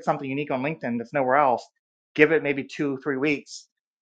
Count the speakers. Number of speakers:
1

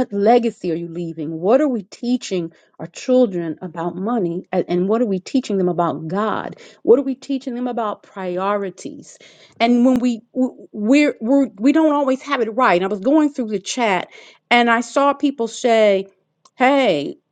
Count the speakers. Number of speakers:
1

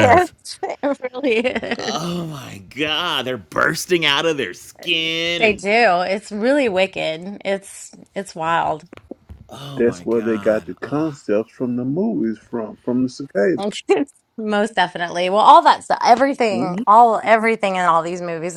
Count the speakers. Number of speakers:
3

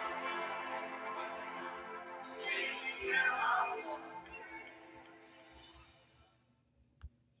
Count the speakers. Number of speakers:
0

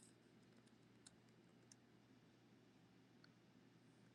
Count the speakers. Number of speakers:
0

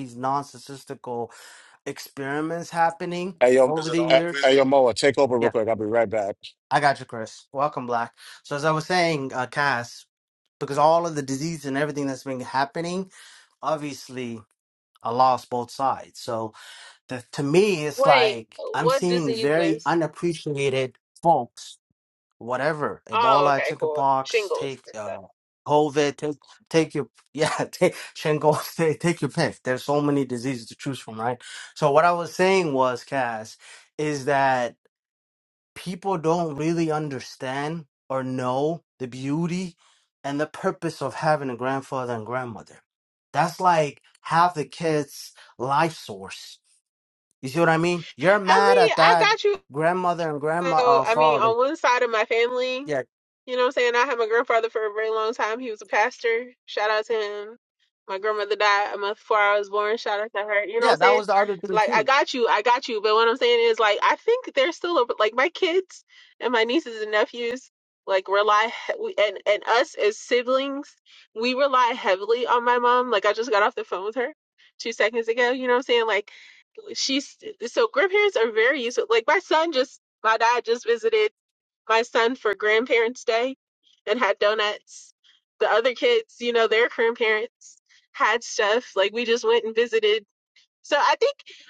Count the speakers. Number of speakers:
3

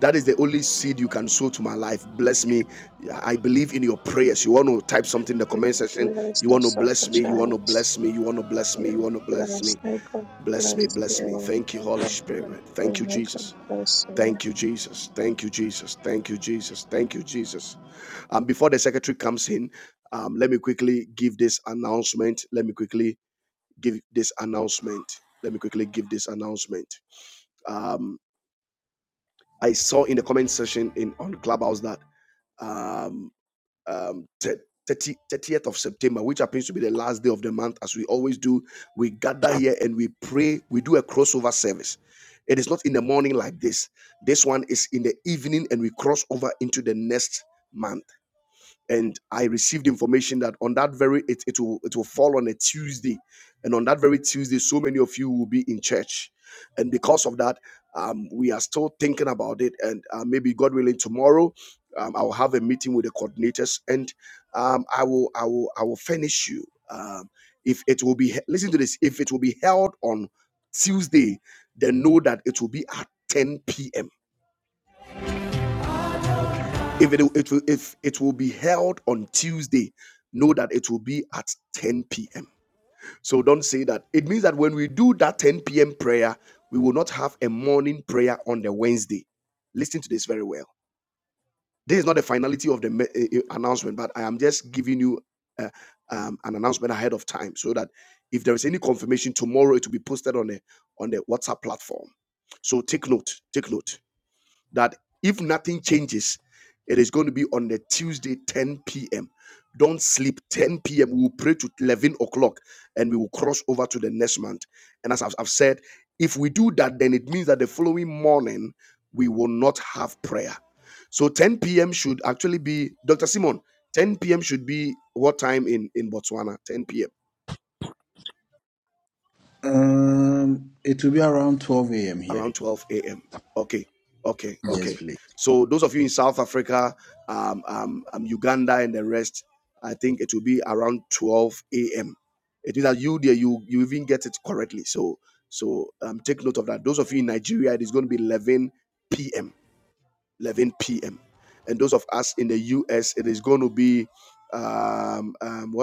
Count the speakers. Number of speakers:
3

